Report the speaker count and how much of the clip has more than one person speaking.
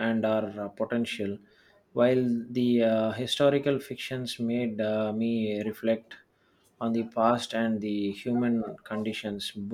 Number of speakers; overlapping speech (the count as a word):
one, no overlap